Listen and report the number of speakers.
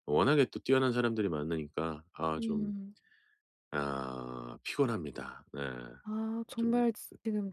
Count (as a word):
two